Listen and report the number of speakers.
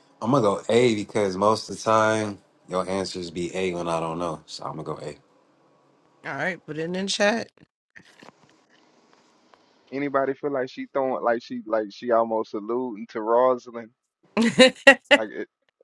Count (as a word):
three